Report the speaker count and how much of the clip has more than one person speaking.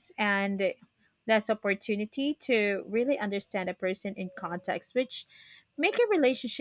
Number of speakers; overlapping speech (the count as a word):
one, no overlap